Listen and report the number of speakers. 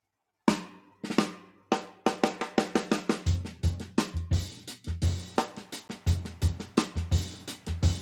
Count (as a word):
zero